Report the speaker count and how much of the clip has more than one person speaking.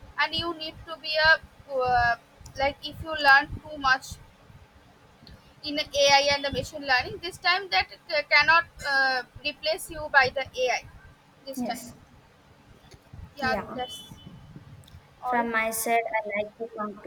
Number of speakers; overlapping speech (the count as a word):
two, about 5%